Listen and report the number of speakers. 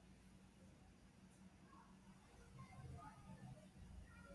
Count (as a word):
zero